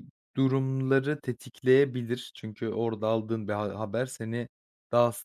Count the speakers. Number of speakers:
one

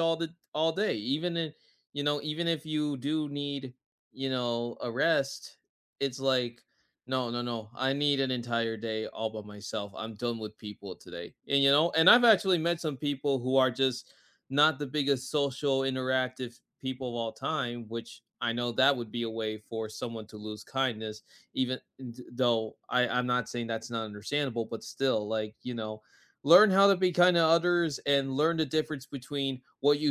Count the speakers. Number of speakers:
one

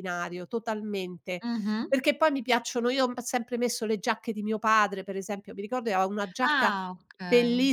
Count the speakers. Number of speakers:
two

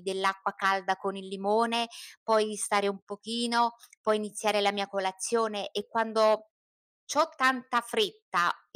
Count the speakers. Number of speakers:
one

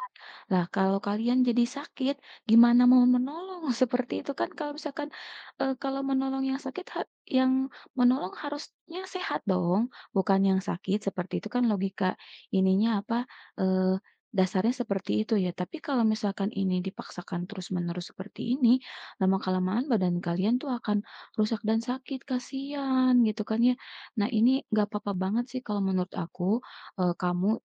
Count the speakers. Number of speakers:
one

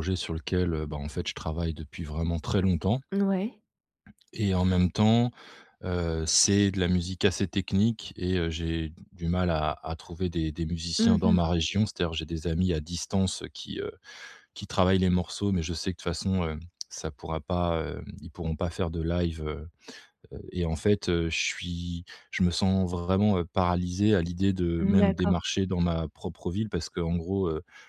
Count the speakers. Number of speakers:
two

